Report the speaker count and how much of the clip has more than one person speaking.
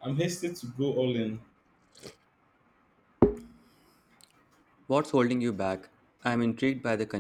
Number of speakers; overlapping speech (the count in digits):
2, no overlap